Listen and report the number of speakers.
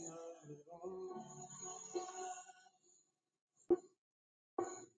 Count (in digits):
0